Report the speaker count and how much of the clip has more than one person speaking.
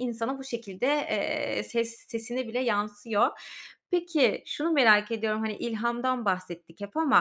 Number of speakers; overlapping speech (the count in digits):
1, no overlap